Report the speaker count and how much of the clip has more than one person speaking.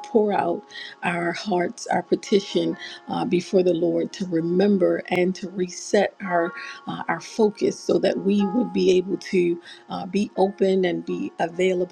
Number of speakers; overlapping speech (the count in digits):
1, no overlap